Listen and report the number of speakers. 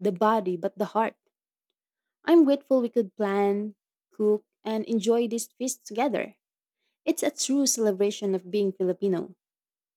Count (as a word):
one